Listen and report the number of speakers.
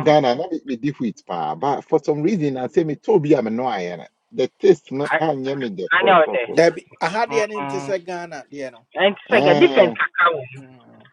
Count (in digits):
3